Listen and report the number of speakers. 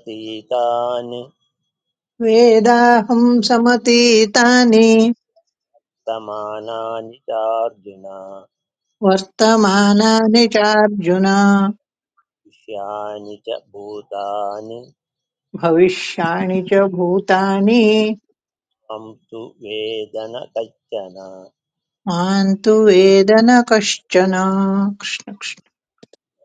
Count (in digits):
2